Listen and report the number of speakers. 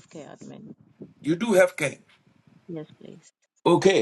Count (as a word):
two